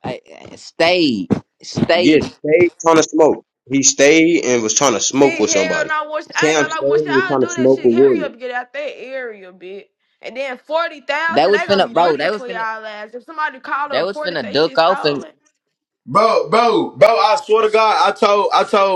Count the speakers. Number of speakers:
four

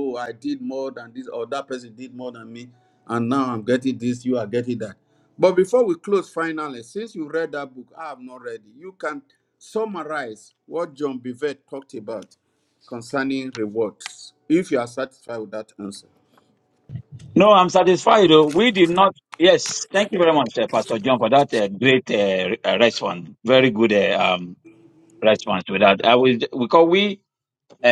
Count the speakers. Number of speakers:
two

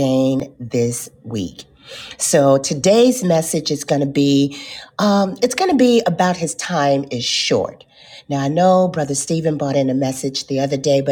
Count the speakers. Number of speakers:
one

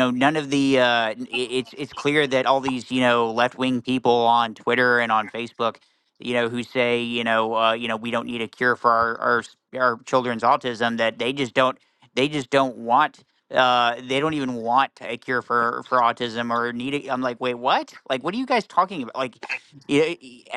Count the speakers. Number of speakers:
one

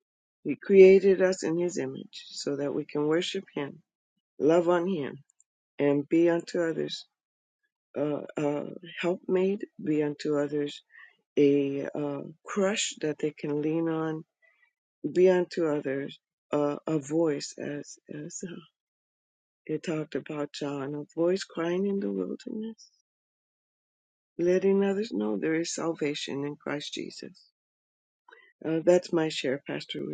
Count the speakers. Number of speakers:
one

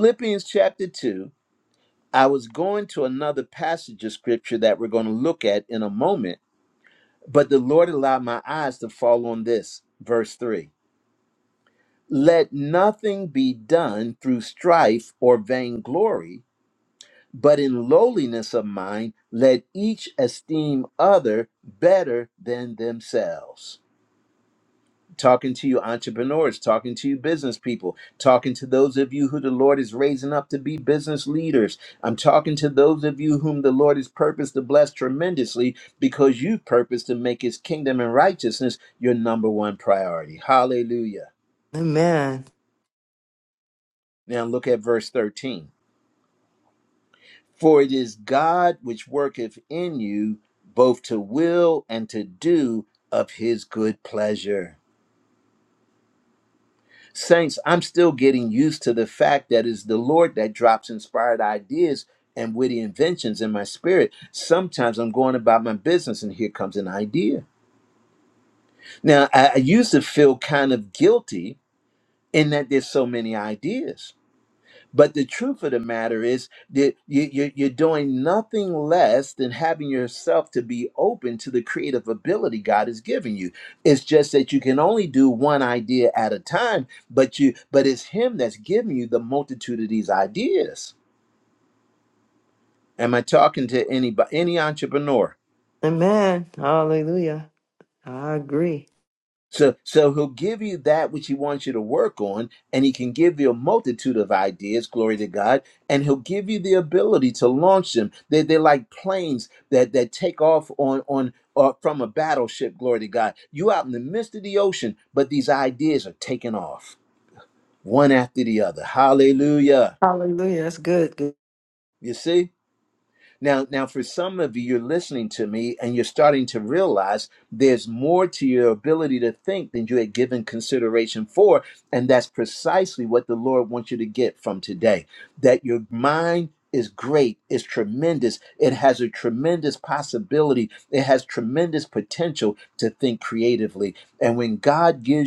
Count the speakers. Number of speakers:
two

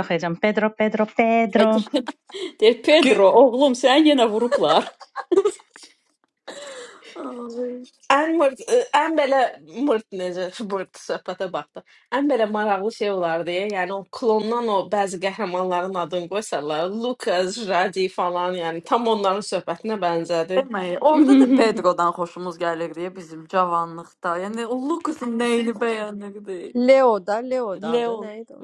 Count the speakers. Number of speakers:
five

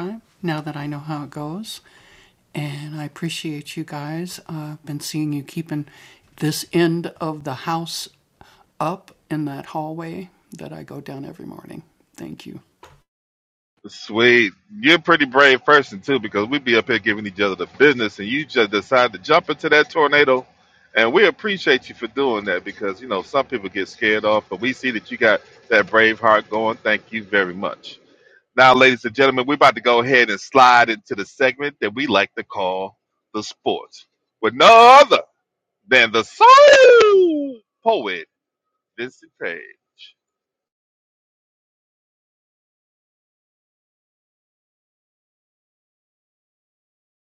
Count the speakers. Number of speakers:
two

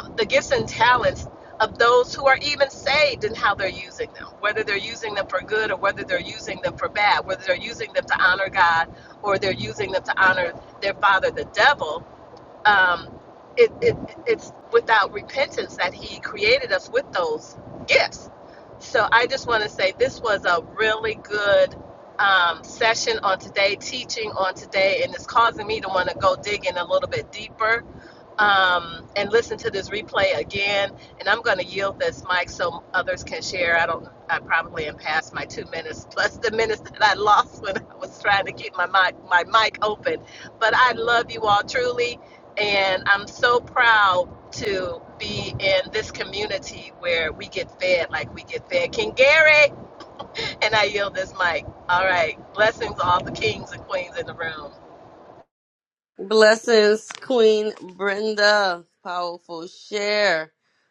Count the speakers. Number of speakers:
two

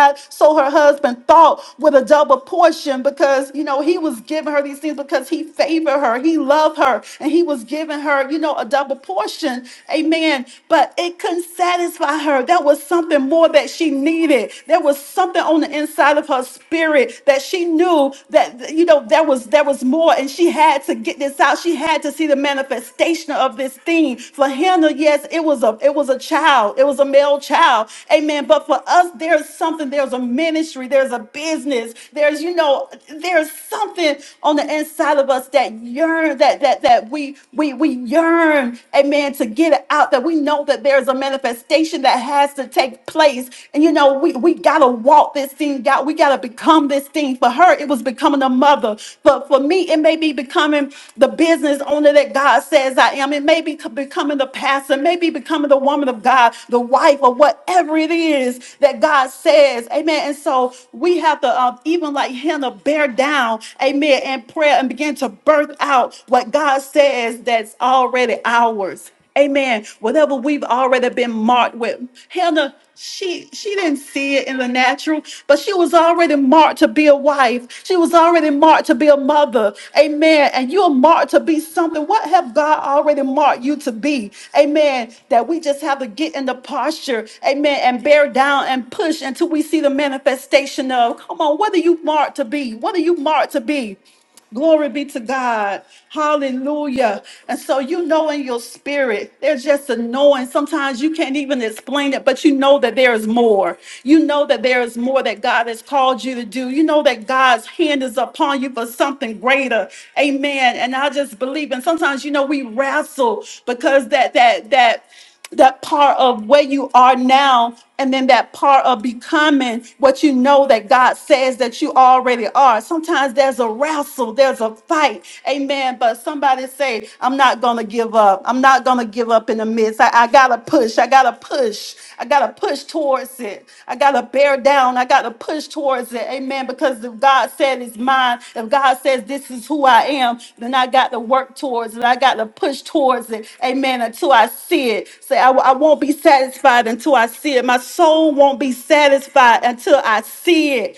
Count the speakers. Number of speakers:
one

